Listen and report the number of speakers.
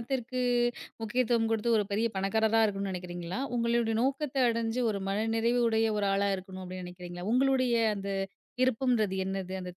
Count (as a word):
one